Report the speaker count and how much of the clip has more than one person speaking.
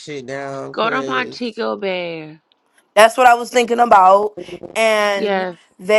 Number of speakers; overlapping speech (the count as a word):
three, about 15%